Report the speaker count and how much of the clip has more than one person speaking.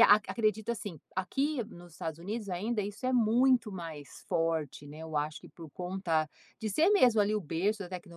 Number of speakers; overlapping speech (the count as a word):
one, no overlap